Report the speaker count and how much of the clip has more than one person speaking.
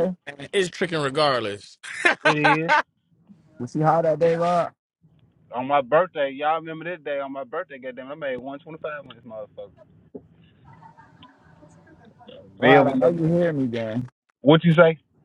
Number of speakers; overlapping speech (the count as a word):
three, about 4%